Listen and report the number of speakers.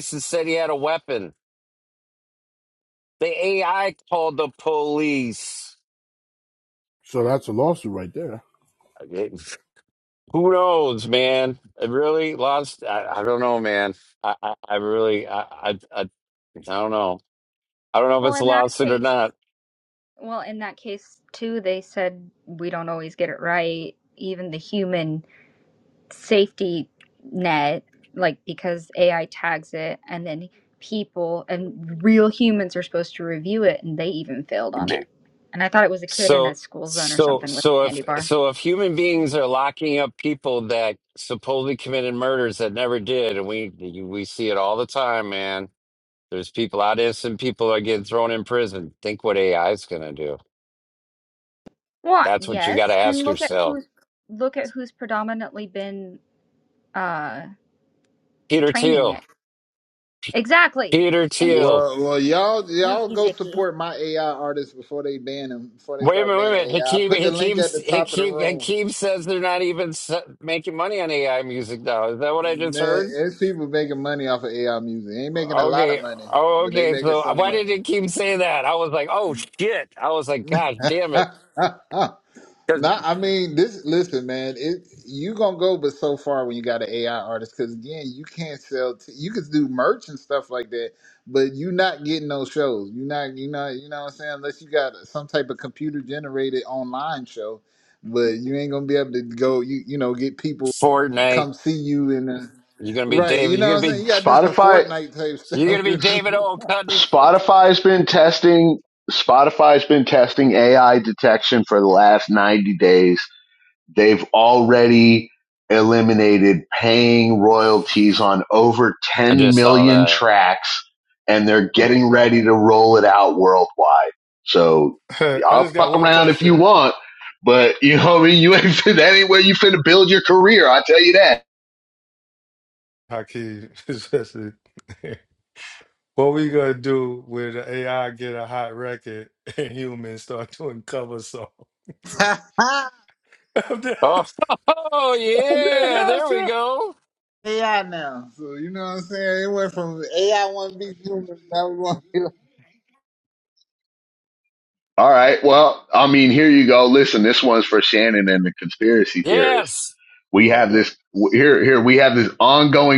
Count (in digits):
6